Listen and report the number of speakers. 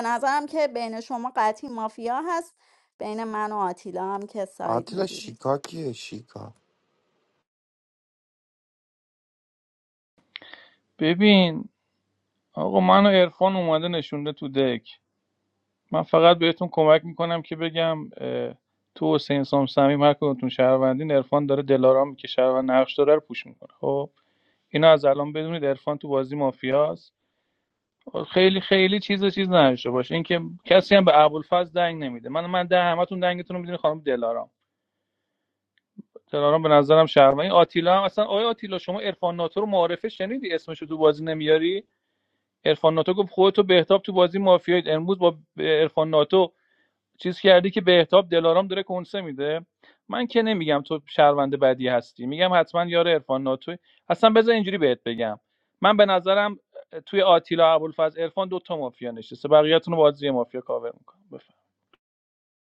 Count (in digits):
3